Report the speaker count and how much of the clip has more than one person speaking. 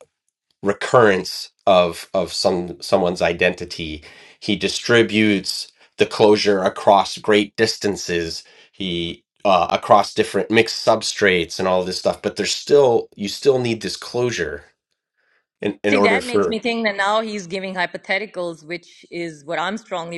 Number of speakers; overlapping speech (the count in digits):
2, about 3%